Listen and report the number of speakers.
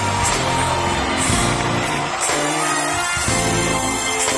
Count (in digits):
0